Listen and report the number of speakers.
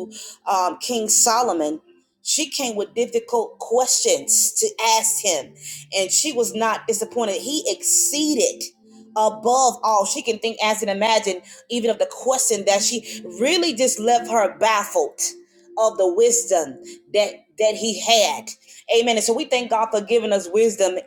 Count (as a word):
one